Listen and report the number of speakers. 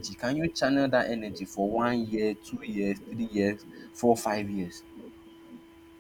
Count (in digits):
1